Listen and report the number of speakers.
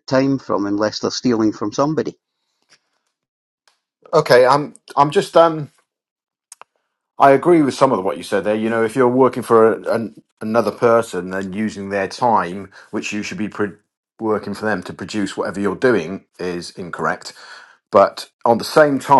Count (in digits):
2